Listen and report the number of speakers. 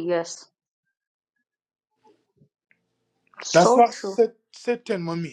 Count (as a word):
two